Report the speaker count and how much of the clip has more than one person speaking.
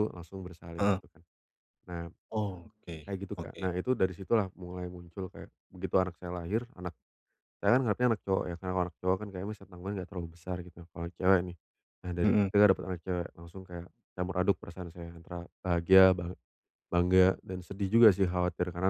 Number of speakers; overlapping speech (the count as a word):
two, about 4%